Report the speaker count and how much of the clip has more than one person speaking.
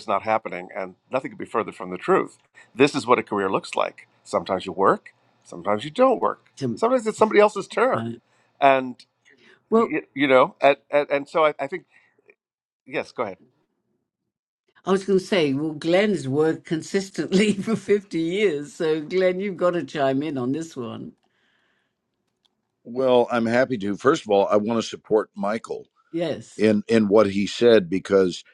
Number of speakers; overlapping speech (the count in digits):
3, about 1%